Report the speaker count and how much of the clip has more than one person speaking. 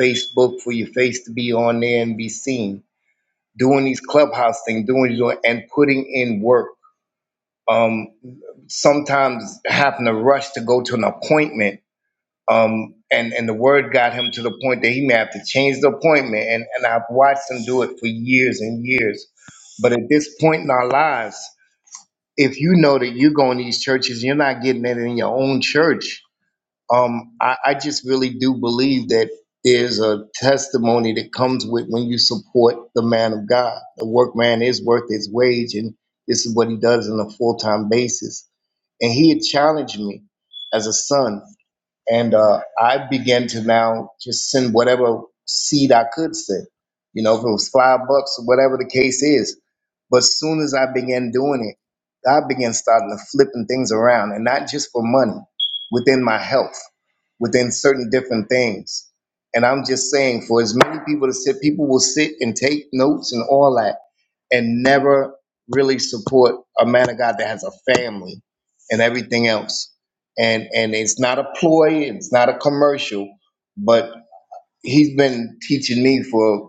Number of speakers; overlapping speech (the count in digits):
1, no overlap